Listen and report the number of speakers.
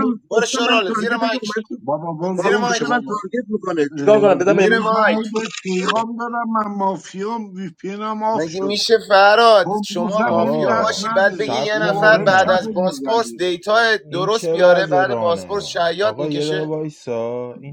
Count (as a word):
four